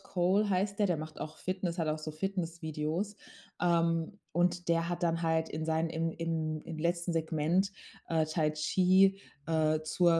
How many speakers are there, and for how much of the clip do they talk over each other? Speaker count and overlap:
1, no overlap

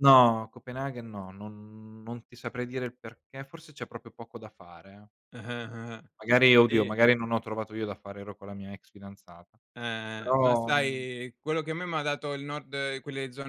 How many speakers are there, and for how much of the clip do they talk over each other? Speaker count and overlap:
2, about 8%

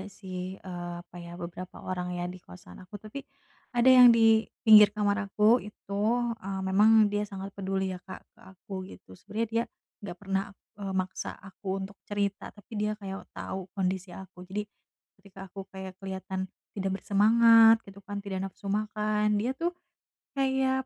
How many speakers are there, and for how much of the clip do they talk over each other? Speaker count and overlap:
1, no overlap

